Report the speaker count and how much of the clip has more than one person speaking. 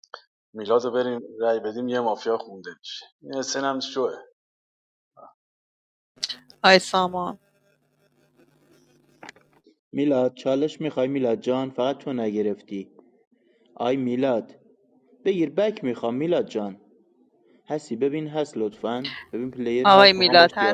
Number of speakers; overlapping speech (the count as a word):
three, about 4%